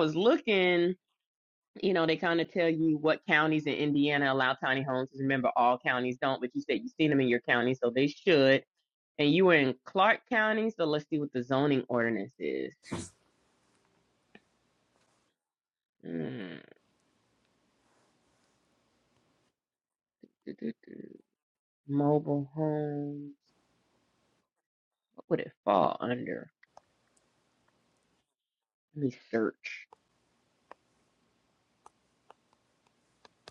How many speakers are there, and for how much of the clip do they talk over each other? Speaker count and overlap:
one, no overlap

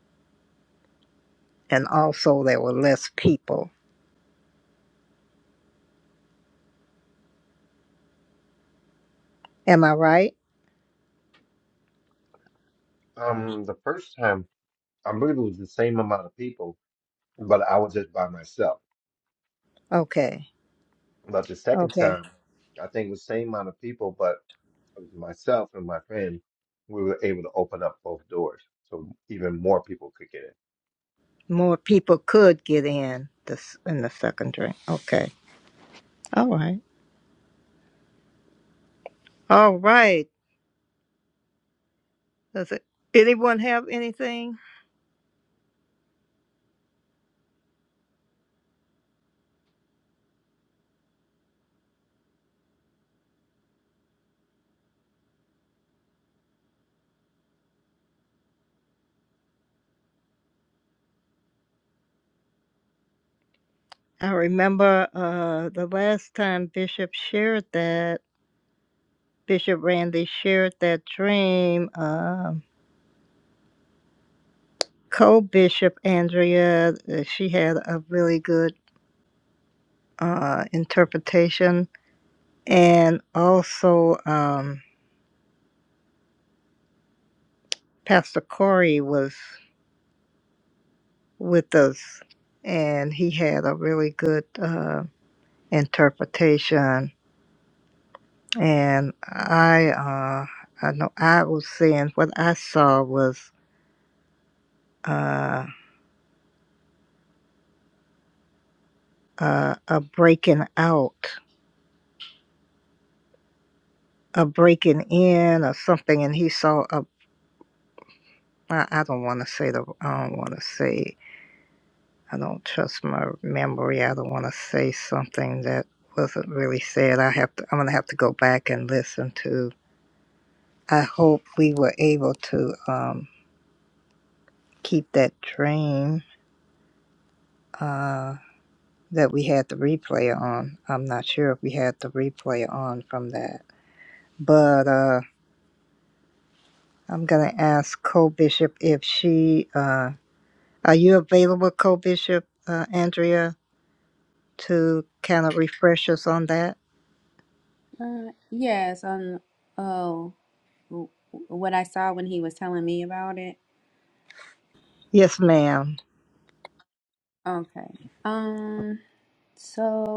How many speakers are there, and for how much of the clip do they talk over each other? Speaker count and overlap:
three, under 1%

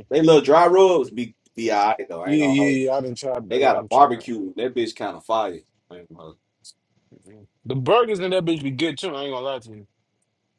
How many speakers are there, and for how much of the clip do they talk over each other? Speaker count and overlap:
two, about 12%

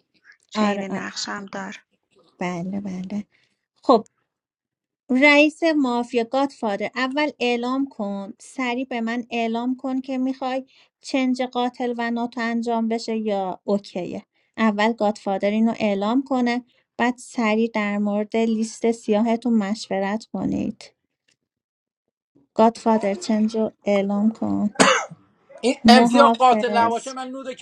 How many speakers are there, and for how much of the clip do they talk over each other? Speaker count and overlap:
three, about 6%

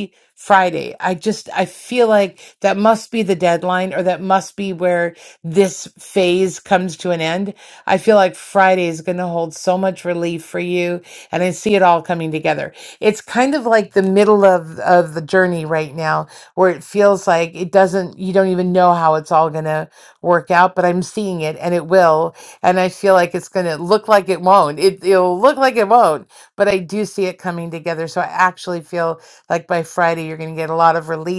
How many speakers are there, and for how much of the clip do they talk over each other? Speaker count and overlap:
one, no overlap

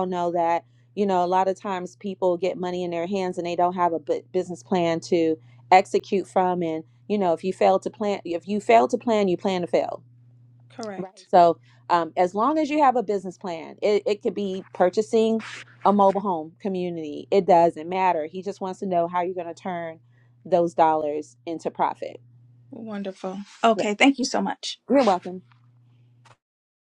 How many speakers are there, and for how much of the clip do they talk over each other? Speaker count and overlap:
two, about 1%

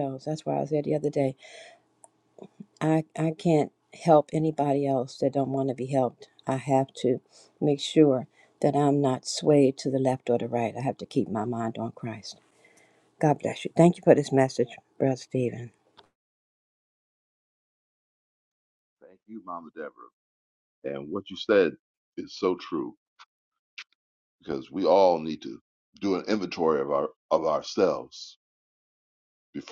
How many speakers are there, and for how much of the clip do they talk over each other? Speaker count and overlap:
two, no overlap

